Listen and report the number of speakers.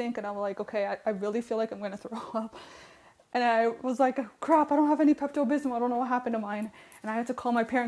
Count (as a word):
one